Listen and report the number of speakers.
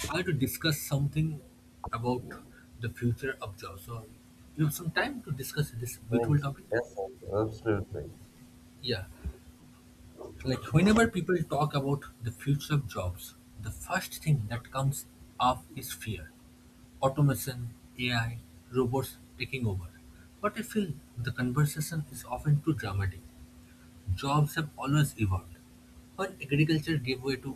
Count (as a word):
two